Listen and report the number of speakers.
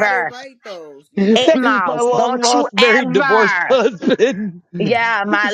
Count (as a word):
three